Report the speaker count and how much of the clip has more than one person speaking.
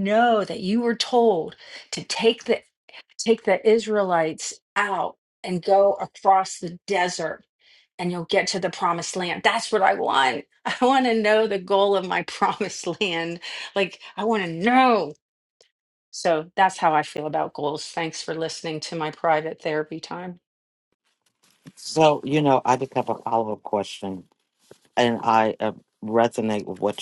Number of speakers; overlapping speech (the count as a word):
two, no overlap